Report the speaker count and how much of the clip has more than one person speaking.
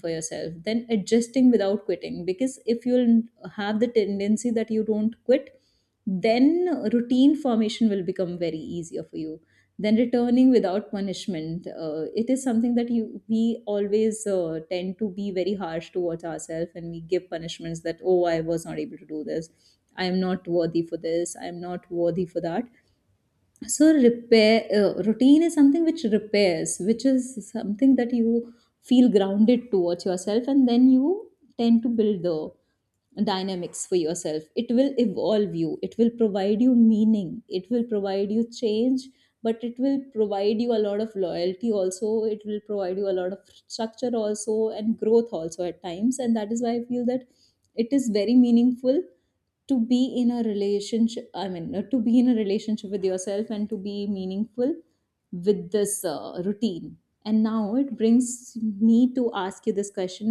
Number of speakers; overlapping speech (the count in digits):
1, no overlap